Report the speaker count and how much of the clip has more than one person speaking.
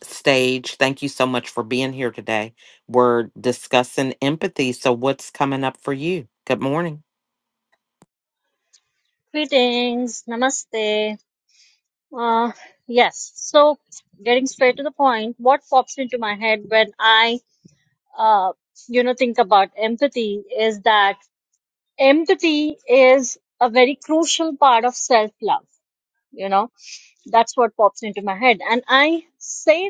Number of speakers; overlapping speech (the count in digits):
2, no overlap